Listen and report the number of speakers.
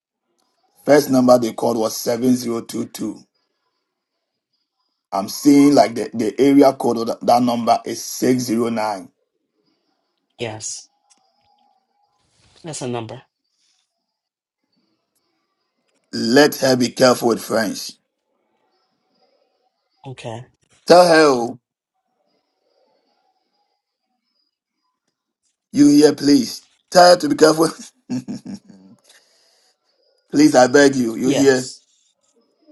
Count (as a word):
two